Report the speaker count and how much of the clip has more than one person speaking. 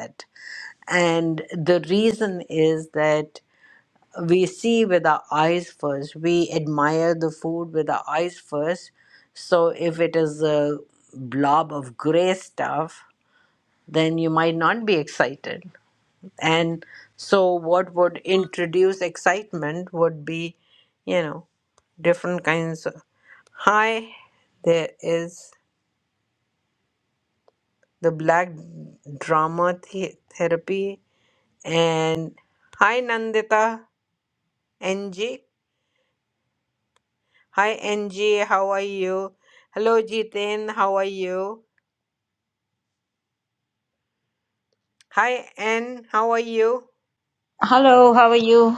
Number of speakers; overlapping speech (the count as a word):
two, no overlap